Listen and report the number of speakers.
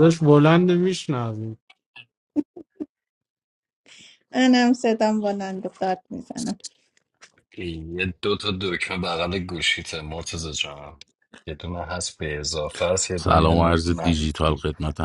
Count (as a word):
four